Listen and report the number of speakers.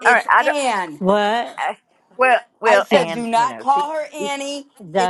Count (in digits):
3